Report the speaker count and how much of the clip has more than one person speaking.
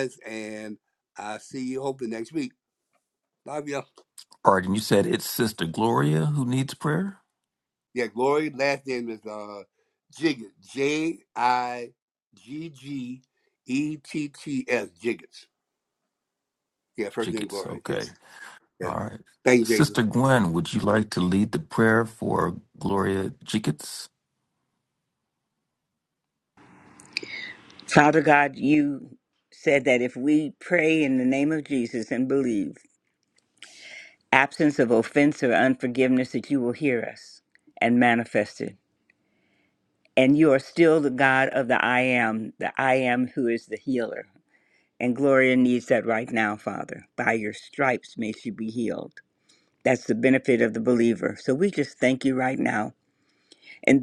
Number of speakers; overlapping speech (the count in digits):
3, about 2%